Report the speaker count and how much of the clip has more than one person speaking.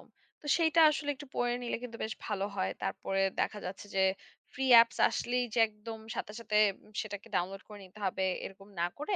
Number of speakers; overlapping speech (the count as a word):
one, no overlap